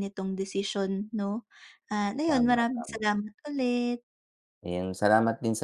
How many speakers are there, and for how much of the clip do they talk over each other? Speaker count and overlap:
2, about 14%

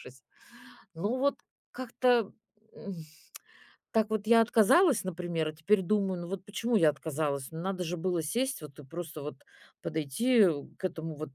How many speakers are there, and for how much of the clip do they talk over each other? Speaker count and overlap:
1, no overlap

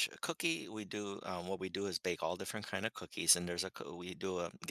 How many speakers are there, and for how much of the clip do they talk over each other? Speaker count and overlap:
1, no overlap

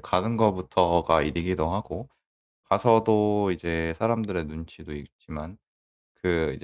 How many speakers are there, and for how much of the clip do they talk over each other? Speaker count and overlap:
1, no overlap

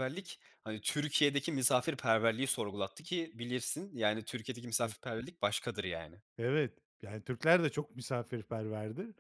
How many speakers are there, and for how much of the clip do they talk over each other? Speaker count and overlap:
2, no overlap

